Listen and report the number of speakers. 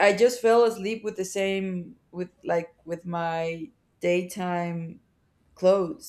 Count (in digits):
1